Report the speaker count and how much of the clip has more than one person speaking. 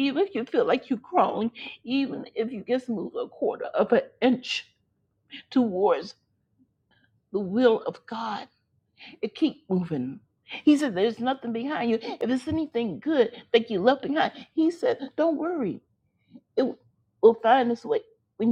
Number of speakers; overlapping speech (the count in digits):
1, no overlap